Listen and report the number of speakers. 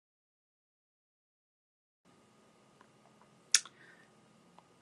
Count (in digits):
0